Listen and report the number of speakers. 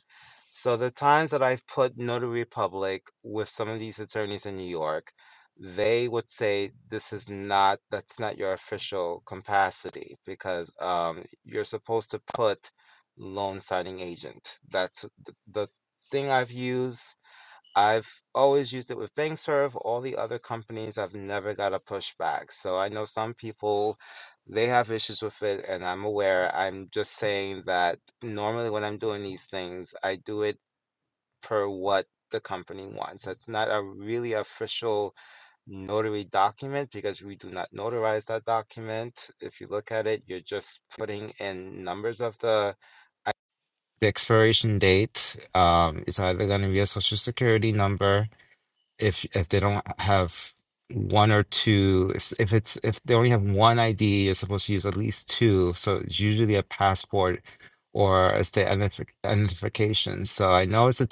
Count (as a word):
one